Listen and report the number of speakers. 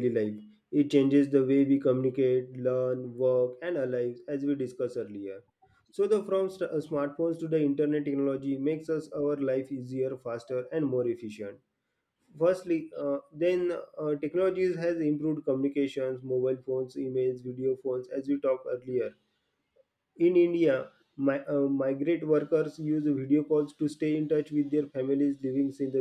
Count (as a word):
one